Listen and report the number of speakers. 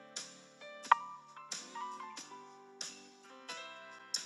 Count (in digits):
0